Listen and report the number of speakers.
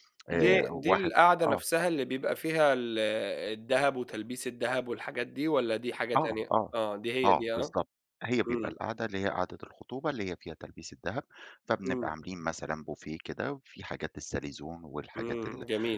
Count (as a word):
two